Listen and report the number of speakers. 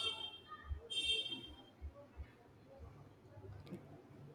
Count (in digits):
0